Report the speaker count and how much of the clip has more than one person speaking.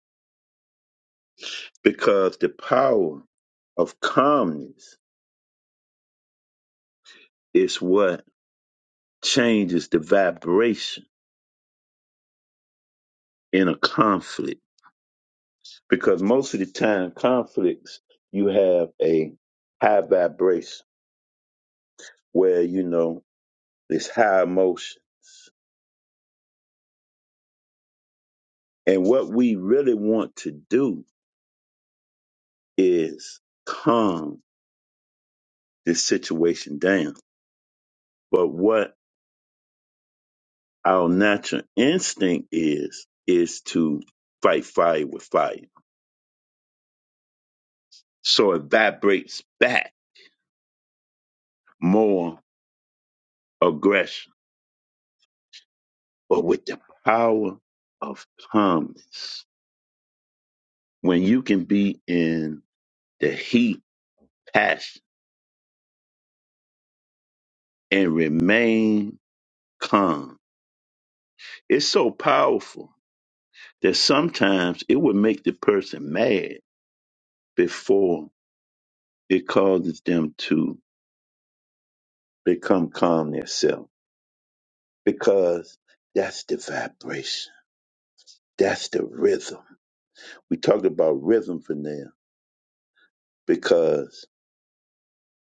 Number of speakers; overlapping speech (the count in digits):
1, no overlap